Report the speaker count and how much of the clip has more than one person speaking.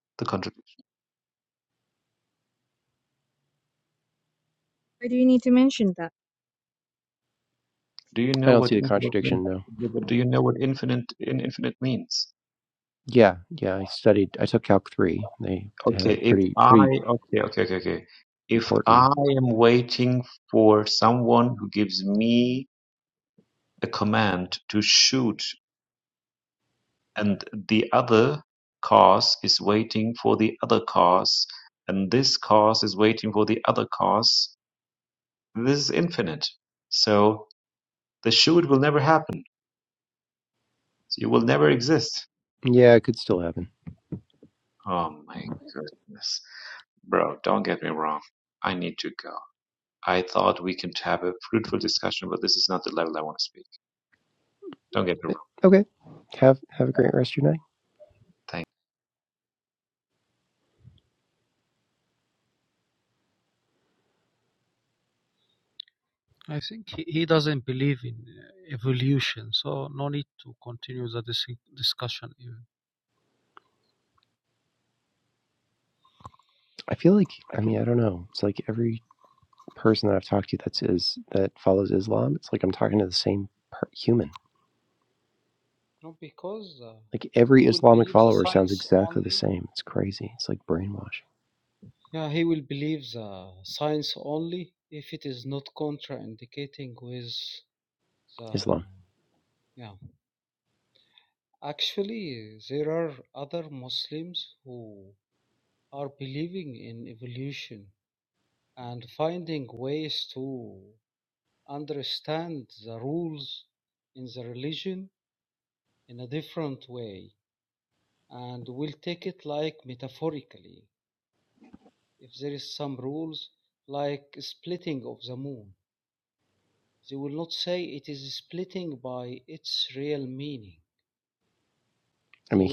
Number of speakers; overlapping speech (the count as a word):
four, about 3%